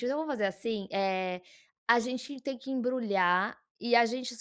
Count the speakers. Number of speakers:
1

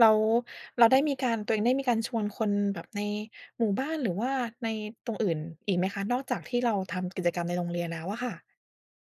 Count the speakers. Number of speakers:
1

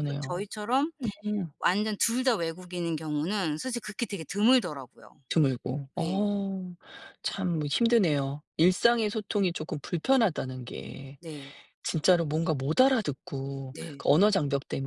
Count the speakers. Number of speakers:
2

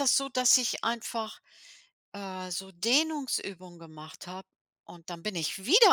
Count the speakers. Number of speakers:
1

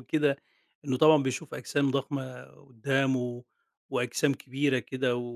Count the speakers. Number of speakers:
1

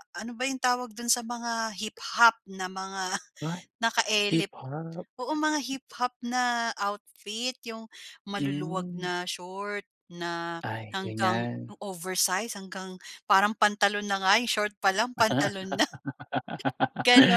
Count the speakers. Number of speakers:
2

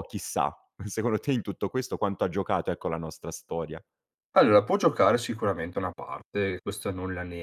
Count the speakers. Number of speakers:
2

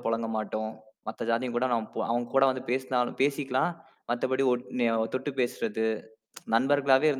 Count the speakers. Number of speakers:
1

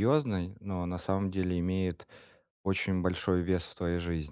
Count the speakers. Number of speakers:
1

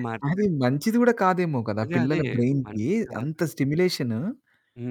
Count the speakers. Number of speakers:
2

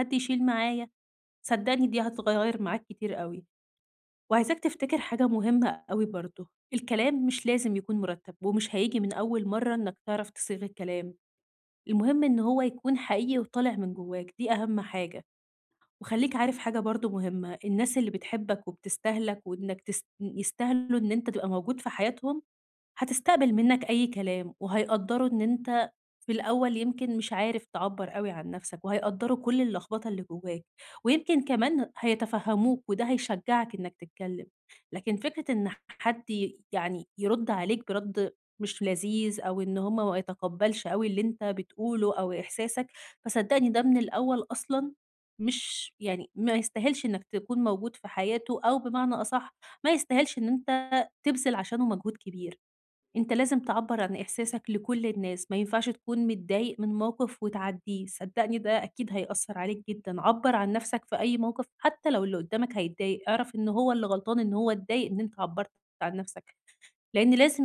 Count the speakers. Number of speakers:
1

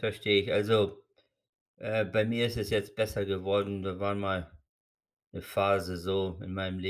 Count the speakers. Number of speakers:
1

